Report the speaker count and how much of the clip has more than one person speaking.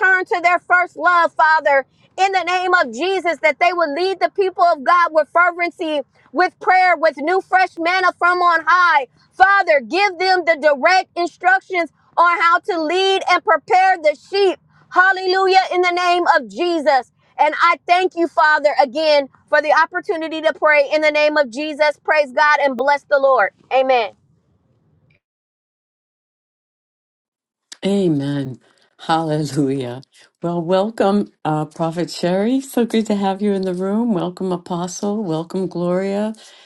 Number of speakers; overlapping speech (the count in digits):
2, no overlap